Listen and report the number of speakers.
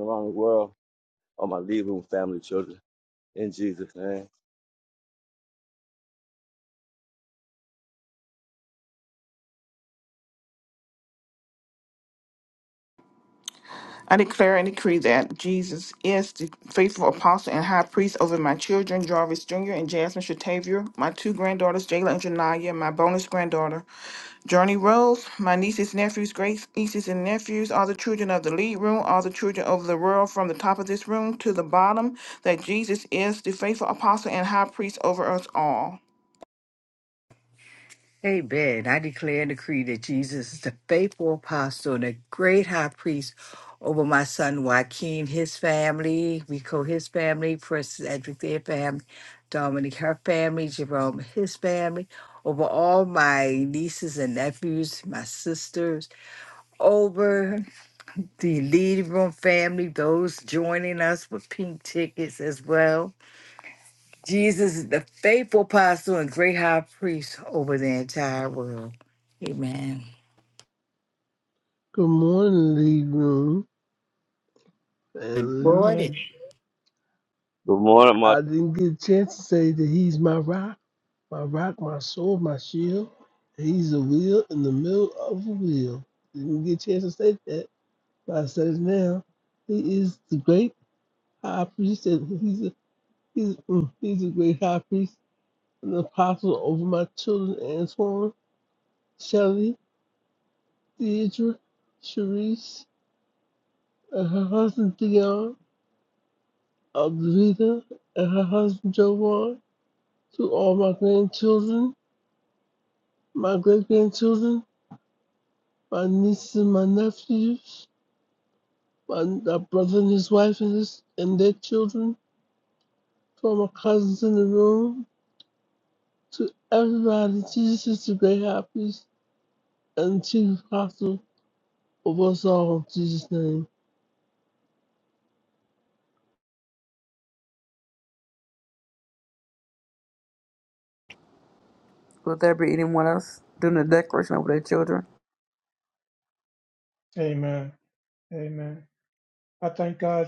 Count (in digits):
6